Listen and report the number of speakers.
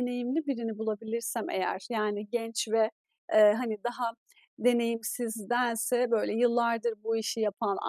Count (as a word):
one